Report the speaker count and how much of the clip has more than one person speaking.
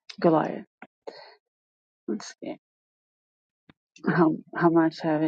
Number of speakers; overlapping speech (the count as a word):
one, no overlap